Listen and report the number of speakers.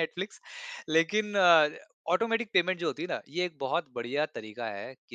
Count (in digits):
1